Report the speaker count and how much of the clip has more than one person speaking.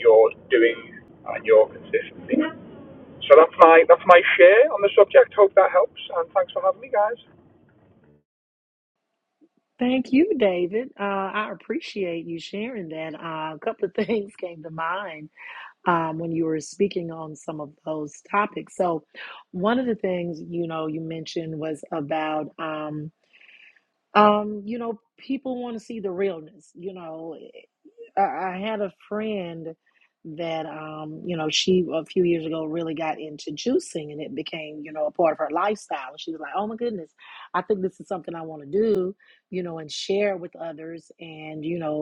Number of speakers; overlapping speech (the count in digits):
2, no overlap